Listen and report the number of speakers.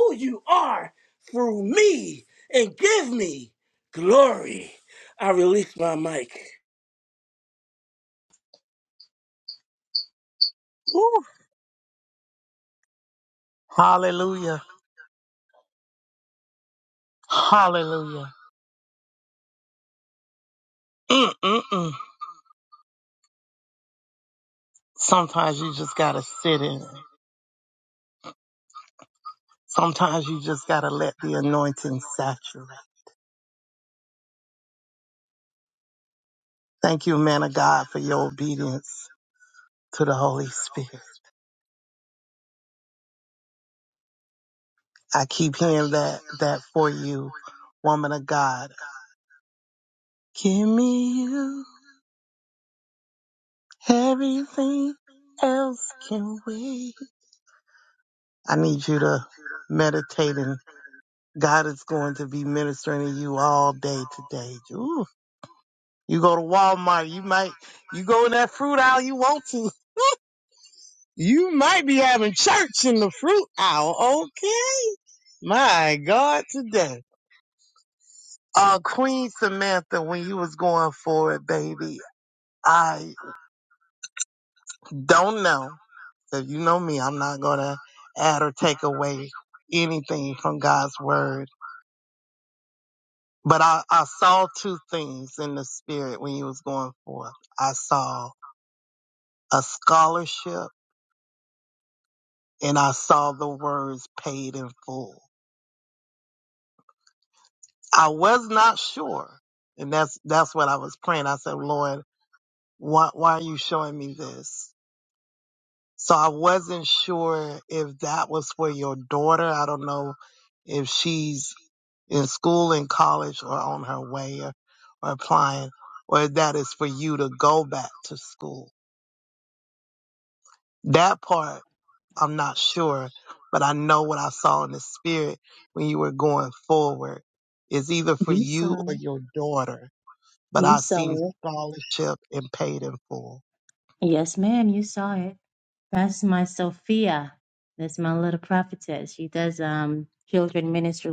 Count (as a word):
three